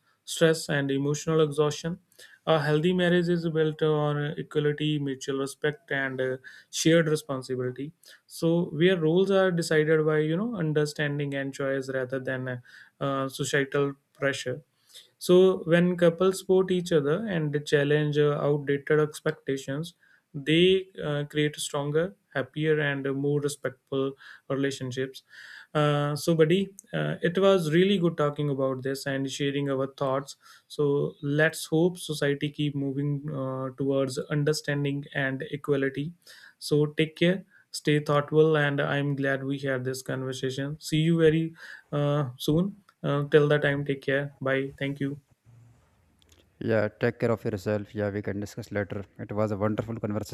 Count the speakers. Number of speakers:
2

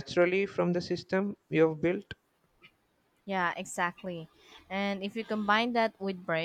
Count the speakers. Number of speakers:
2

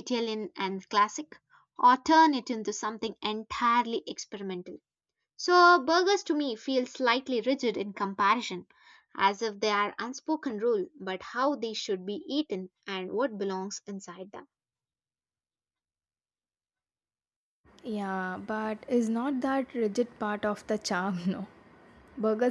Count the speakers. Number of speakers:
2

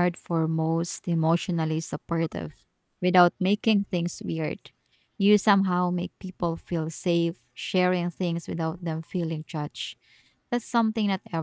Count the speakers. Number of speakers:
1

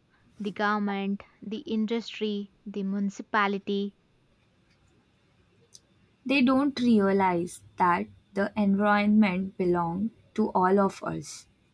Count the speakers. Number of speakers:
2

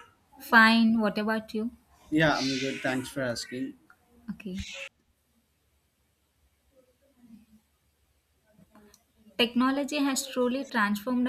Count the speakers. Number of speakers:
2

